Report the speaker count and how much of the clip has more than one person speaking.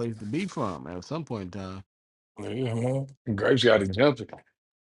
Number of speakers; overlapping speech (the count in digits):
2, no overlap